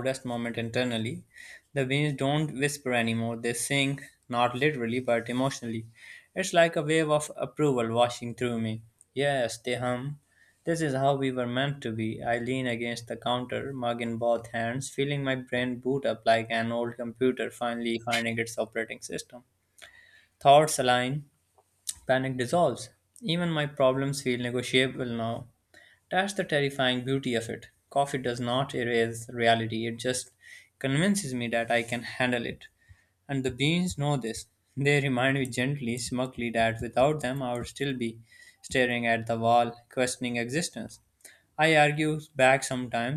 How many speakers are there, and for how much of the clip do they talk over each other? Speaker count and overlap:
1, no overlap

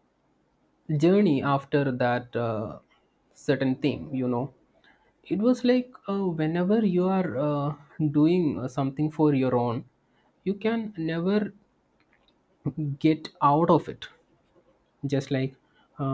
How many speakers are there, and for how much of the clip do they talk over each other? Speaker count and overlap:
1, no overlap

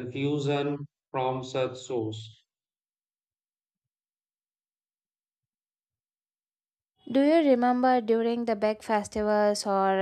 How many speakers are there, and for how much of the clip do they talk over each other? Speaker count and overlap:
2, no overlap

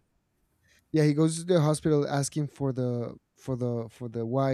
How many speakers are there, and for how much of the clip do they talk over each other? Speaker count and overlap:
1, no overlap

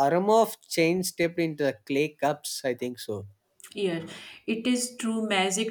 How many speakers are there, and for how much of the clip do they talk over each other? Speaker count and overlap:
2, no overlap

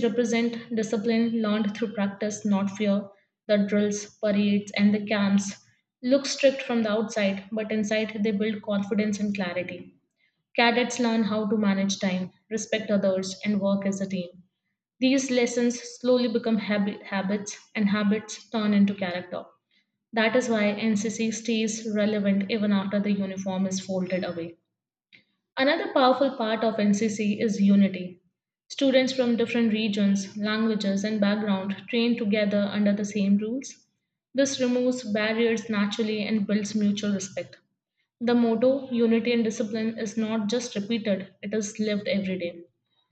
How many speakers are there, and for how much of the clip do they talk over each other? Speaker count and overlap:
1, no overlap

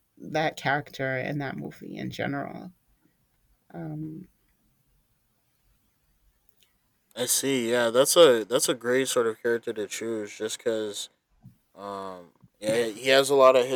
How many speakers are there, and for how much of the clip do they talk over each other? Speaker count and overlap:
2, no overlap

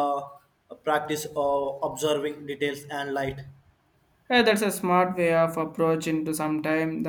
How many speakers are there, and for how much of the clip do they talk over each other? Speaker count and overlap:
2, no overlap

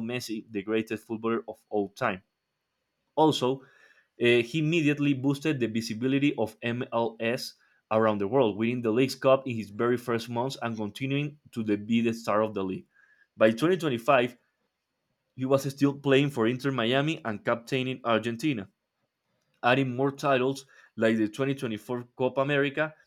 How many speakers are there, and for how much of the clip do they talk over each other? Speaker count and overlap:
1, no overlap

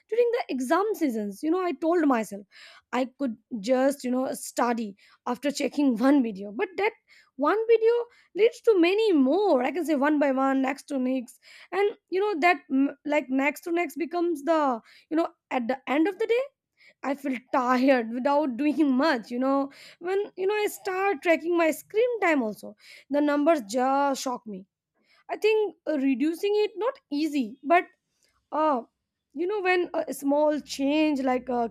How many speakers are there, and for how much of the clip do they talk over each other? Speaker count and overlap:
1, no overlap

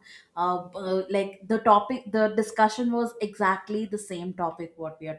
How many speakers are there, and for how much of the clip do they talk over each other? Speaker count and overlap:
1, no overlap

